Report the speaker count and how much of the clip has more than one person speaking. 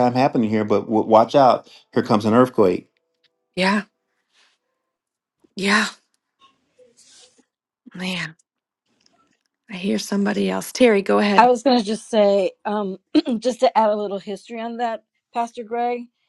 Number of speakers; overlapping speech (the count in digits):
3, about 1%